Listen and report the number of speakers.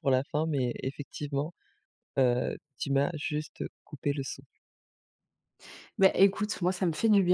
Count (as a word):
two